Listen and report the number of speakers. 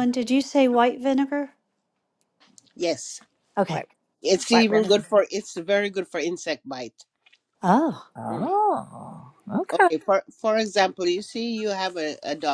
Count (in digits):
3